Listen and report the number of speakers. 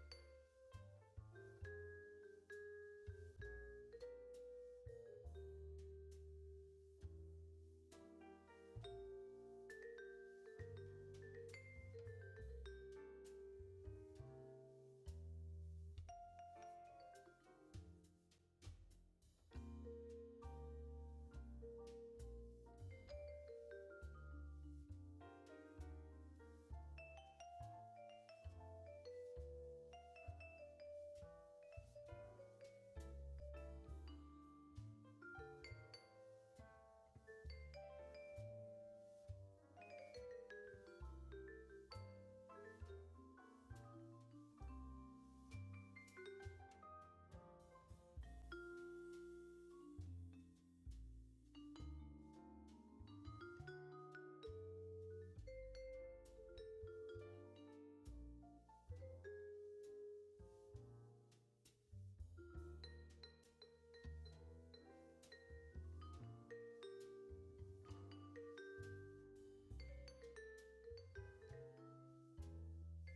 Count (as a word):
zero